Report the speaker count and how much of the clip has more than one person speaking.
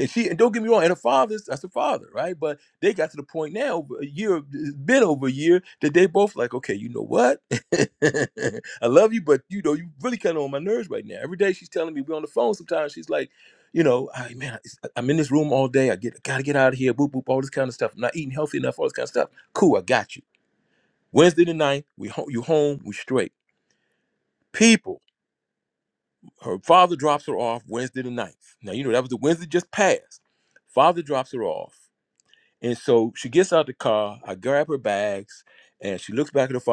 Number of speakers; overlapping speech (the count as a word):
one, no overlap